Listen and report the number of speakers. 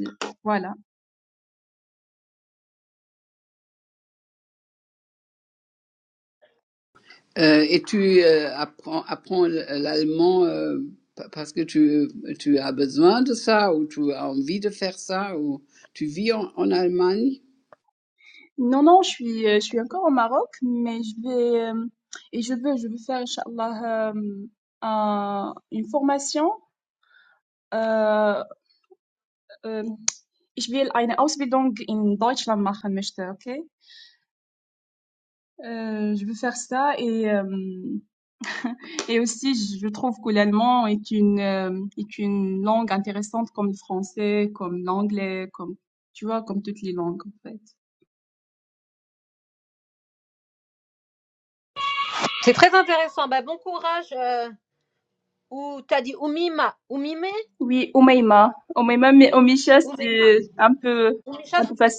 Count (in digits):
3